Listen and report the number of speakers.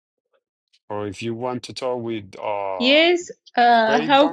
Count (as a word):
two